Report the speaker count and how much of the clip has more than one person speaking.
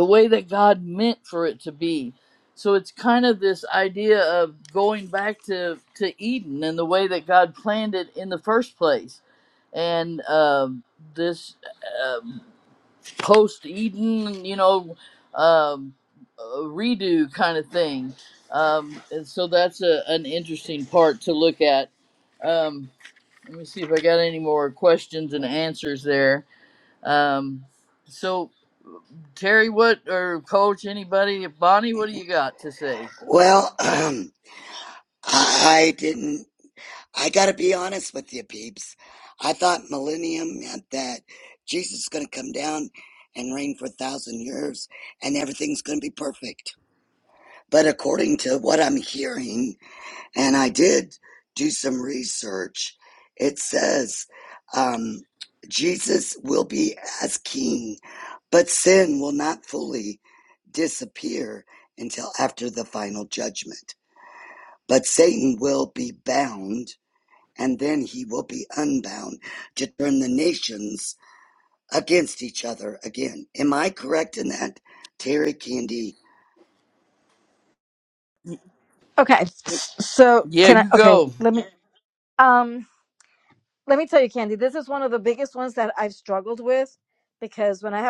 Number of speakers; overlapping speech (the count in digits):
3, about 1%